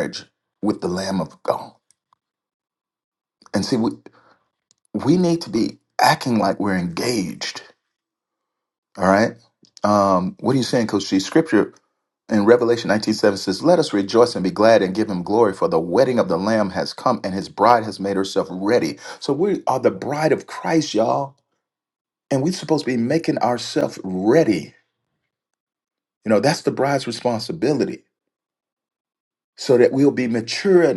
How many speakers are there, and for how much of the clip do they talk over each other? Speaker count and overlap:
one, no overlap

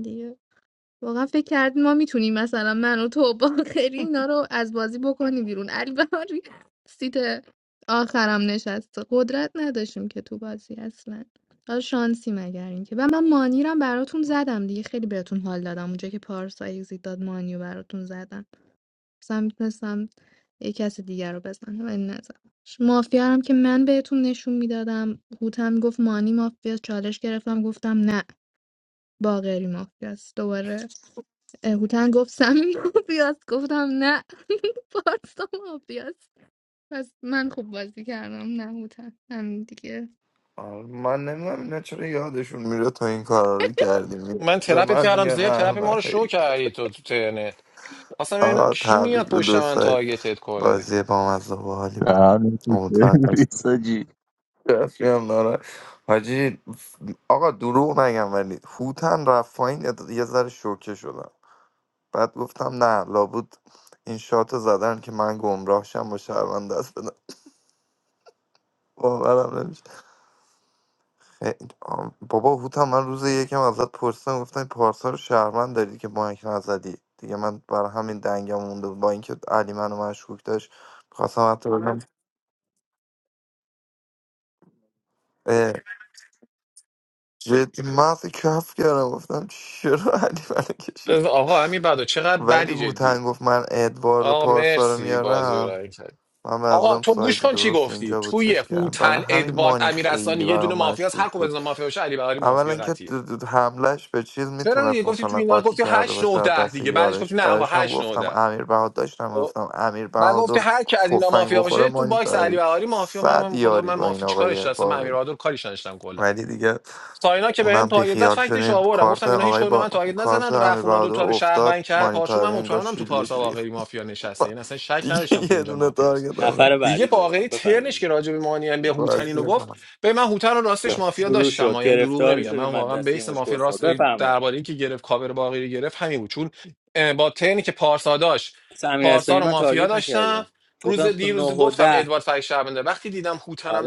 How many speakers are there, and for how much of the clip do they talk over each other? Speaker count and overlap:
five, about 25%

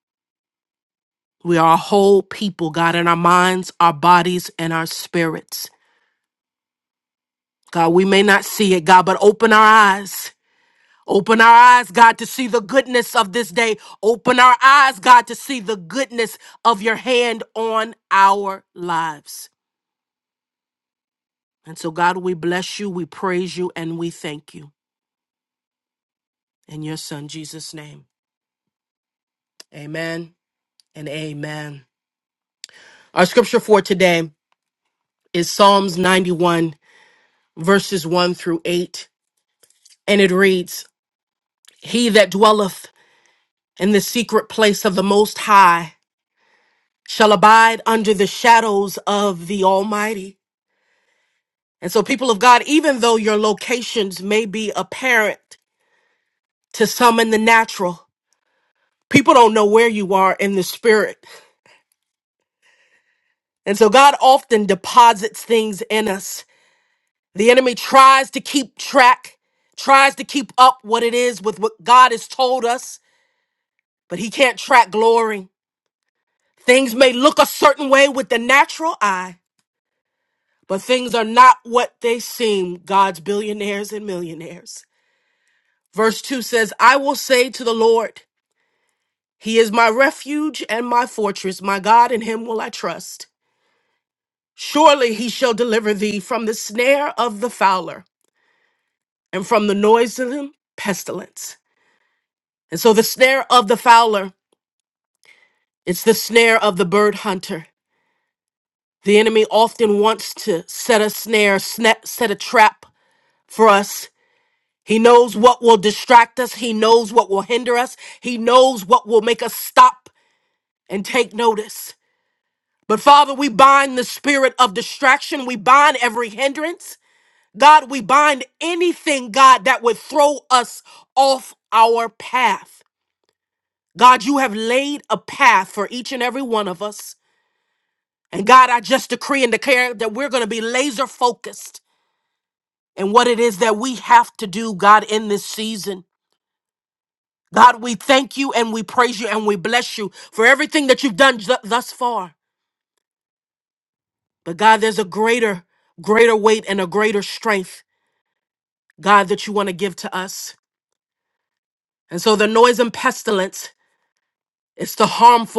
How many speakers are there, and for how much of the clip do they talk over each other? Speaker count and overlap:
one, no overlap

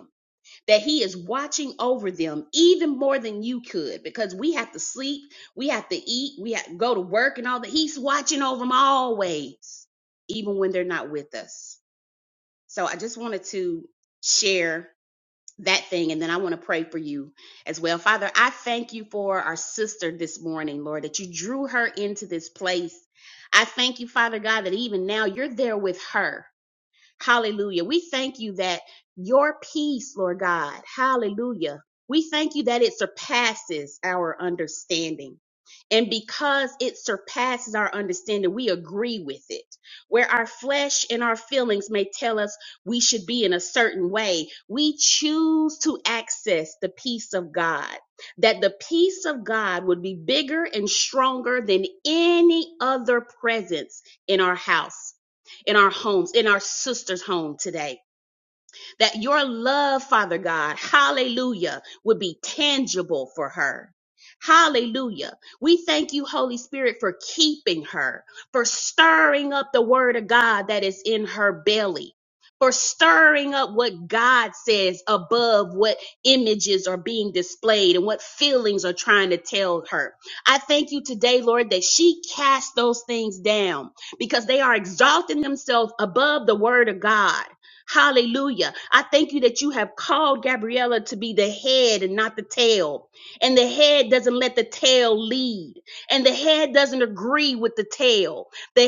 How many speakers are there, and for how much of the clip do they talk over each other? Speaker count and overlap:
one, no overlap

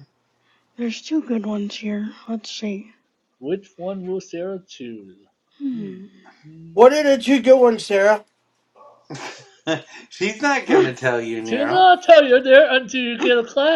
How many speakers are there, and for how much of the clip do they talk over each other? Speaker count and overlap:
four, about 6%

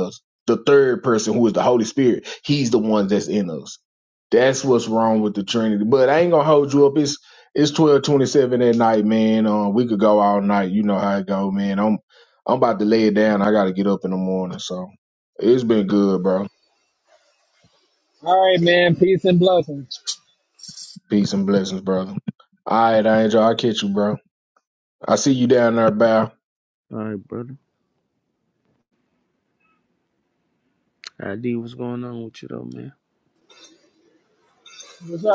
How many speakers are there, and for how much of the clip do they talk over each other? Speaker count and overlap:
three, no overlap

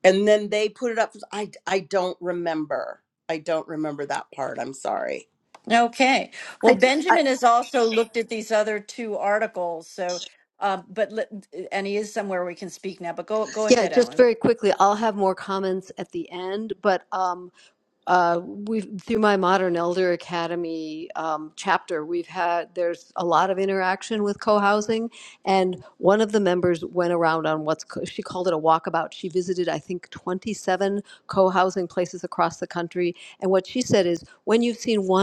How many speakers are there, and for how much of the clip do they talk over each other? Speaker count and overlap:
three, about 3%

